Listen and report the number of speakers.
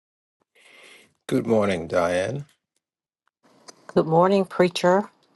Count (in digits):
2